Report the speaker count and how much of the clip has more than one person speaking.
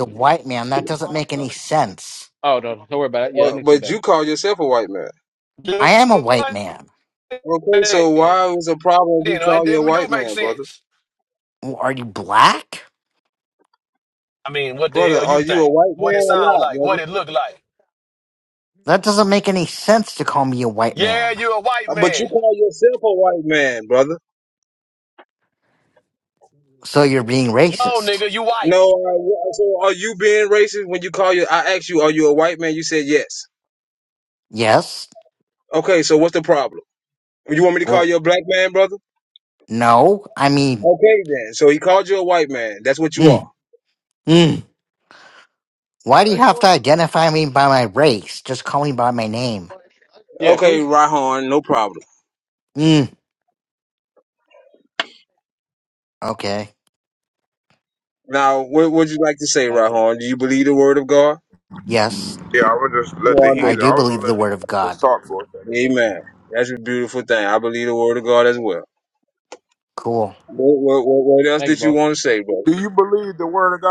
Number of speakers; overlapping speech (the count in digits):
5, about 13%